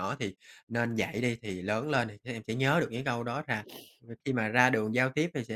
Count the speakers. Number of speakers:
one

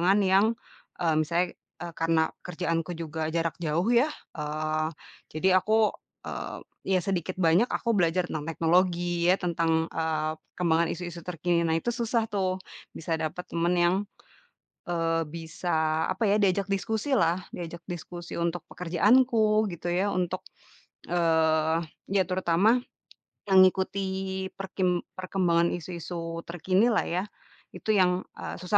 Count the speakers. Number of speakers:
one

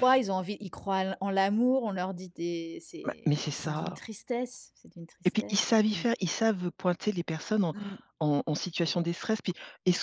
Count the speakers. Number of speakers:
two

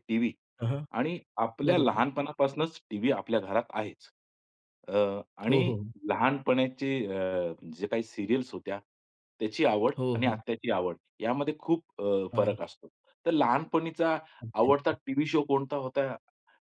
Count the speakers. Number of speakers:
two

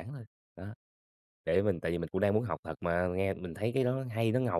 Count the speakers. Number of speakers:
one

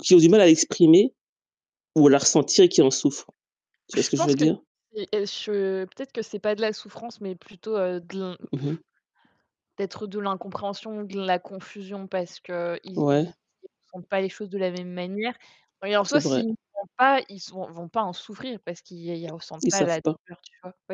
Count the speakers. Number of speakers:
two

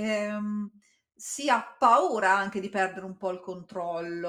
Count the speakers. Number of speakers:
one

